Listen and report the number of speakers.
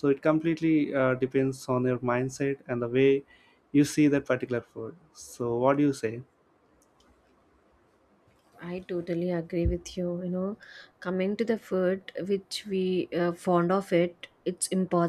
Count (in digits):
2